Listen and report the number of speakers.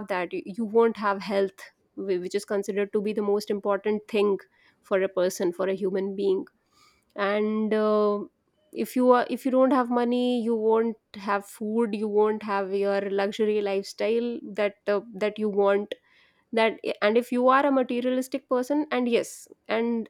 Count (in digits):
1